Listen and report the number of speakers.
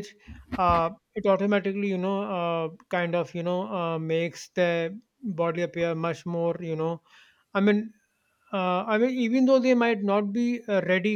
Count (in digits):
1